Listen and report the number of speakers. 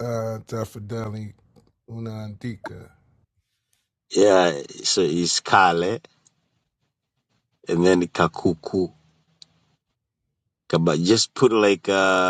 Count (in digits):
2